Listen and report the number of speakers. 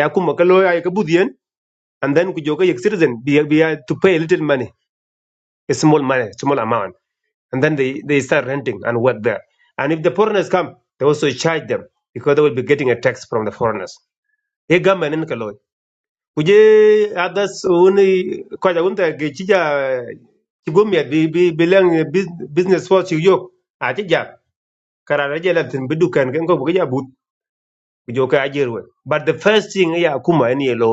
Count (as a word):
one